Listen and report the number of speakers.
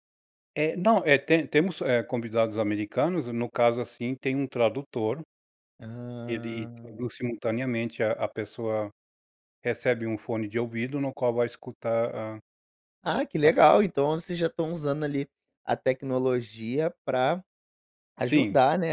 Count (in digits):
2